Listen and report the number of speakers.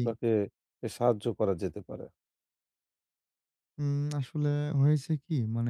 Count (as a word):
two